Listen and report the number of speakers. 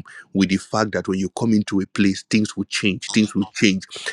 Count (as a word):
one